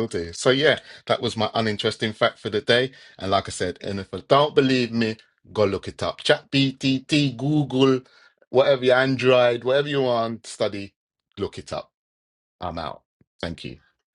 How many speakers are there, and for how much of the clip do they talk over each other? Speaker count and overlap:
one, no overlap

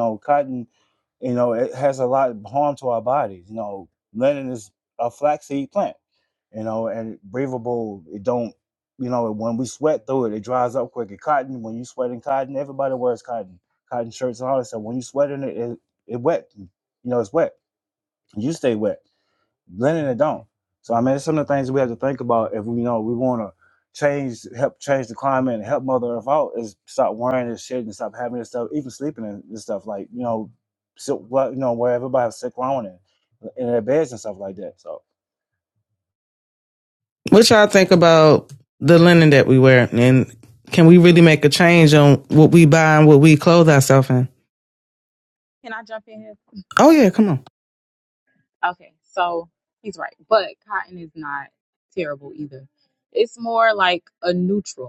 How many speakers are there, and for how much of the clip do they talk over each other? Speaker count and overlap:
three, no overlap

